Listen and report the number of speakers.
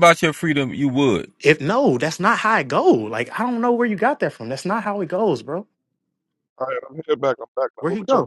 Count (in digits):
3